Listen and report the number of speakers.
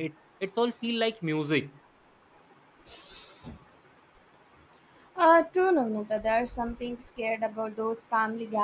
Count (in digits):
2